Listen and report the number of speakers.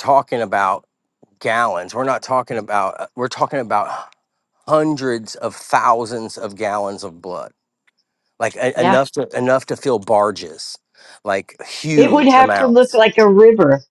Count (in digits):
2